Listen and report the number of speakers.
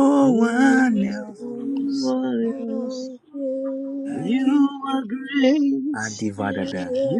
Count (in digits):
3